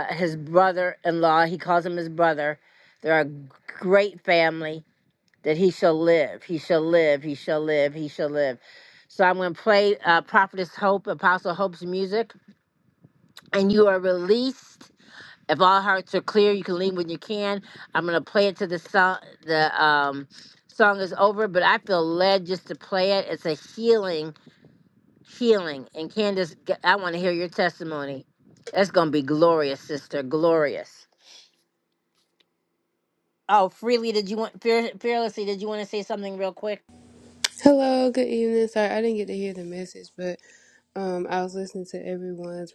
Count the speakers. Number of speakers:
2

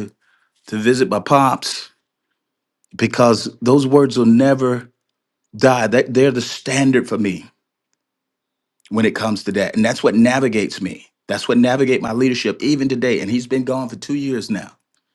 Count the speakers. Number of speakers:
1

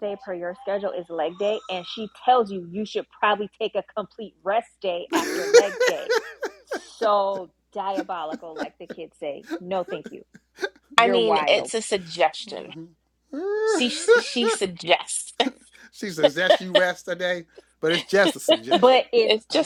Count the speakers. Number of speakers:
3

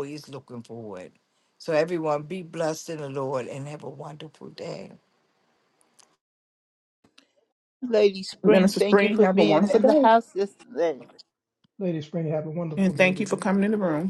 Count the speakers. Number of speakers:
4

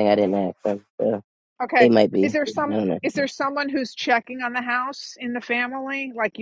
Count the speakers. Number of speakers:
2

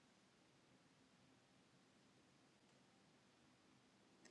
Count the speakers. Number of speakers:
0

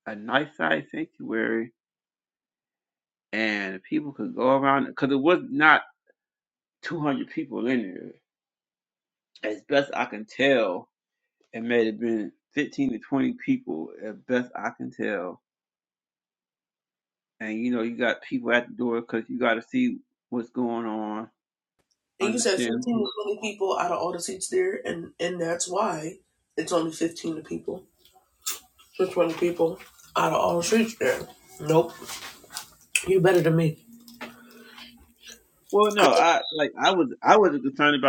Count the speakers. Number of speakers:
2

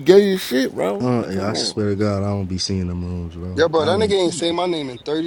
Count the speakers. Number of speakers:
3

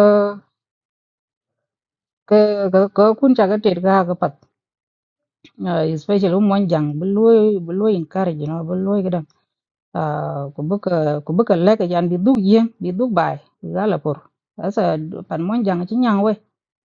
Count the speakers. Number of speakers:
1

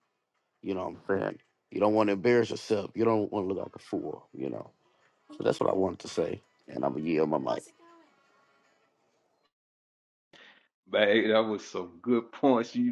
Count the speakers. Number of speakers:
2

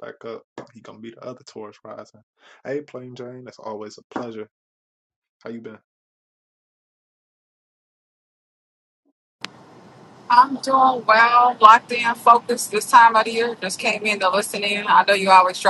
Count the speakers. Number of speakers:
2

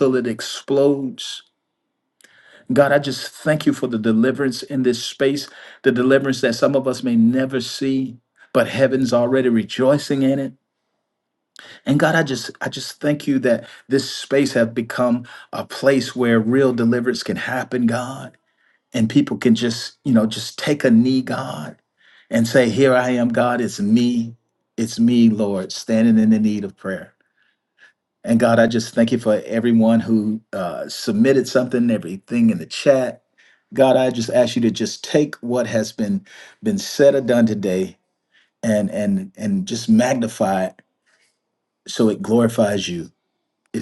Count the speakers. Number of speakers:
1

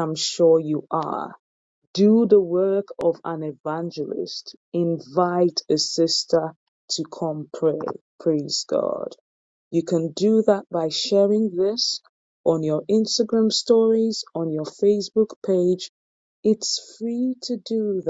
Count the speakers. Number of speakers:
1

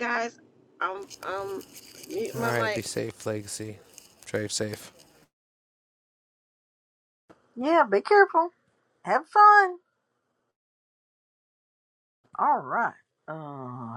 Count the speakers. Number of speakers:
3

